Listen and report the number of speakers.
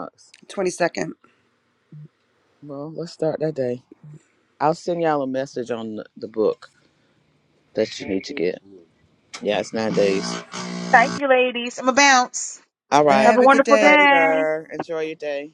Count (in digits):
3